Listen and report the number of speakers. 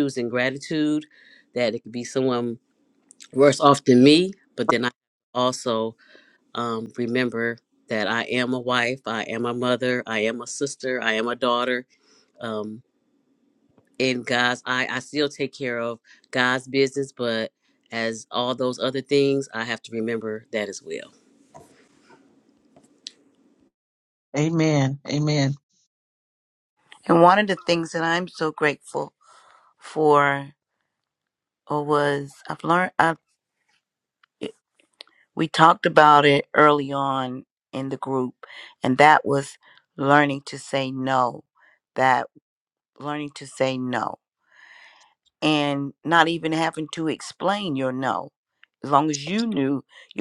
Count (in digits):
3